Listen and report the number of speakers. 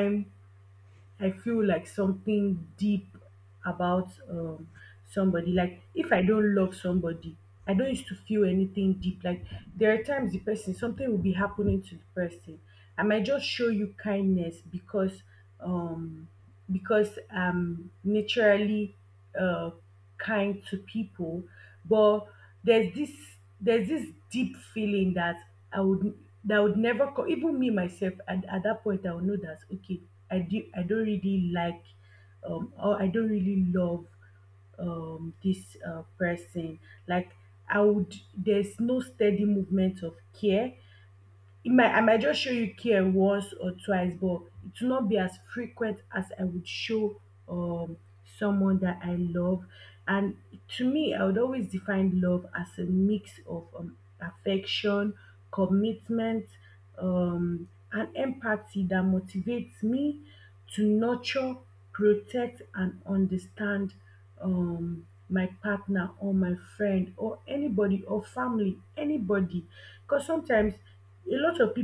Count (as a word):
one